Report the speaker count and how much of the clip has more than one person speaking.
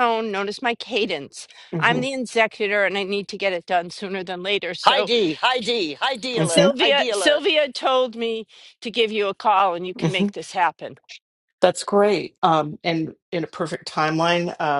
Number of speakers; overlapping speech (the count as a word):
three, about 13%